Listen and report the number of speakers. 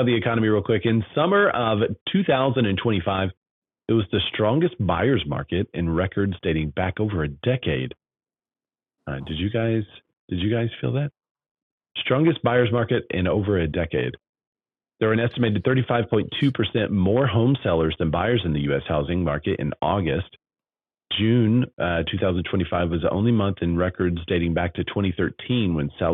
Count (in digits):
1